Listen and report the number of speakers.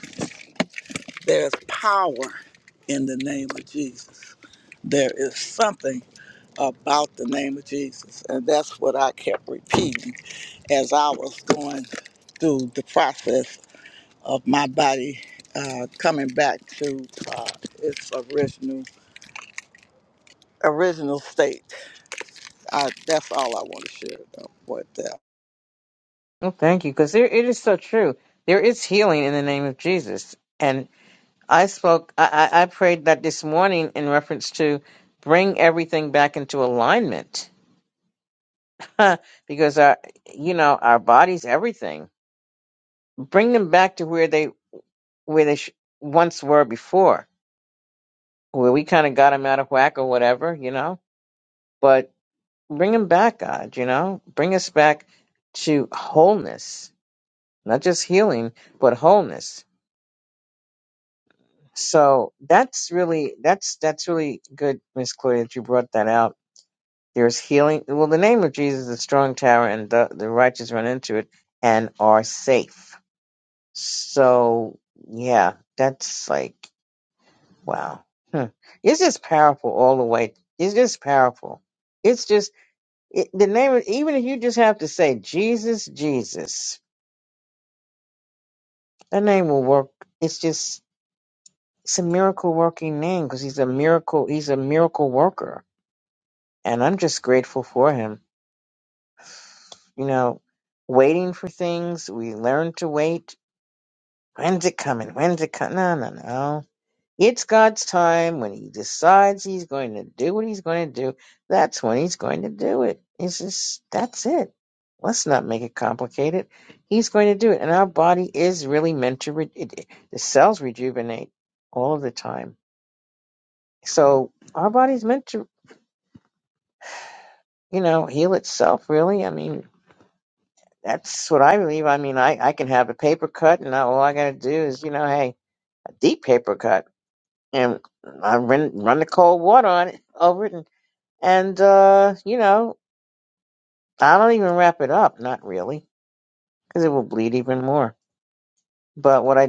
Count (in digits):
2